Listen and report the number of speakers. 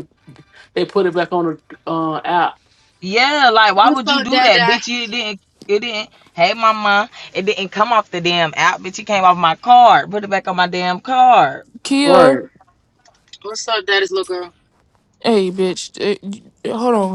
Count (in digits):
4